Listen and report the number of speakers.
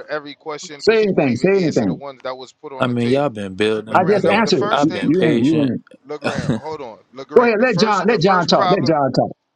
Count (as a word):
three